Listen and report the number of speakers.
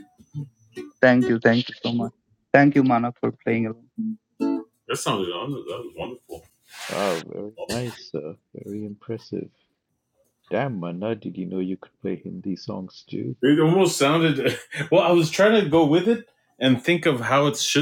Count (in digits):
3